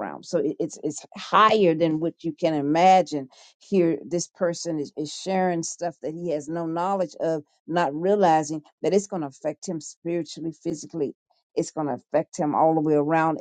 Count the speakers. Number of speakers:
1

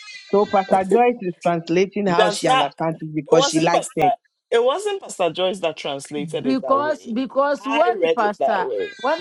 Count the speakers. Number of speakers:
3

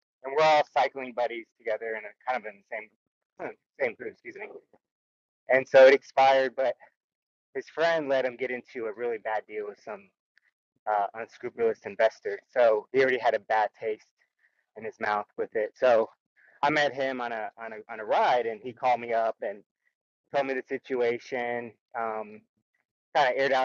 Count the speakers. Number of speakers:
1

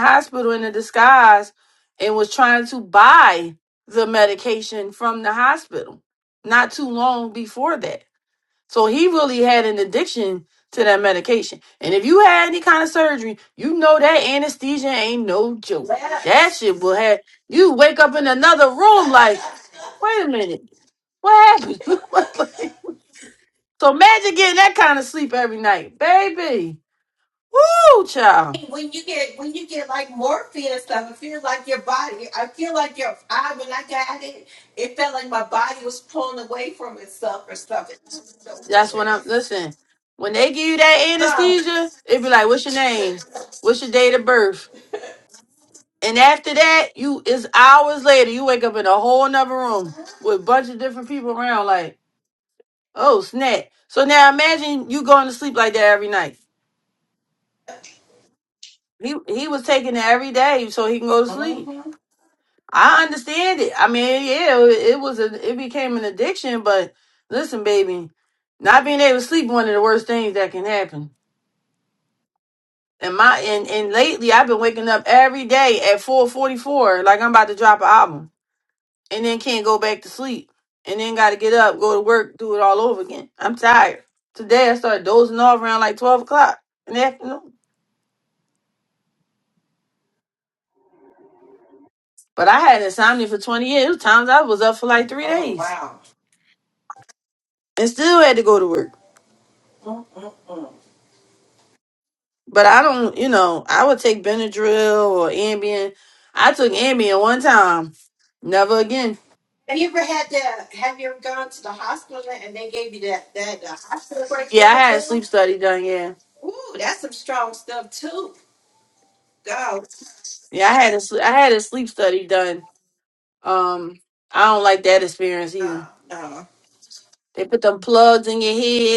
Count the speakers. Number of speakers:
2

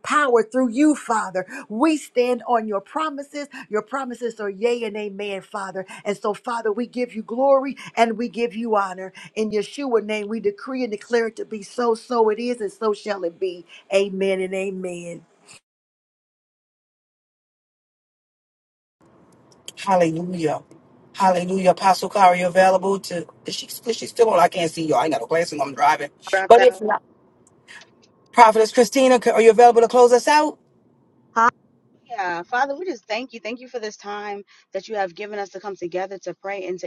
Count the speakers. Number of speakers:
3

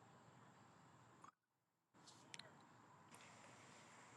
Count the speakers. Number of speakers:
0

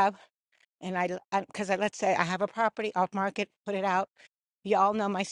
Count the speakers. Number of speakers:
1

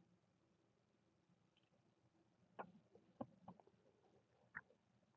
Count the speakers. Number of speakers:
0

